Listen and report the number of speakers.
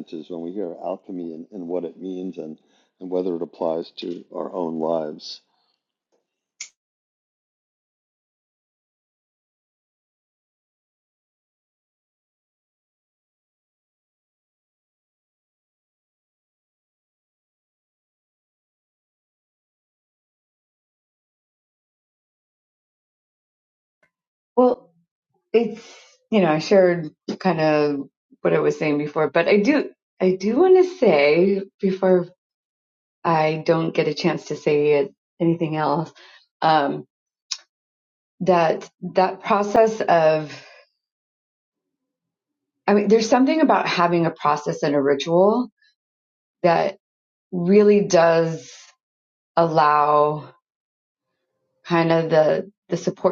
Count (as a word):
two